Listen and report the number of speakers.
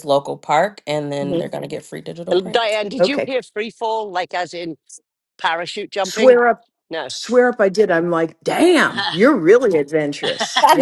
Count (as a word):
three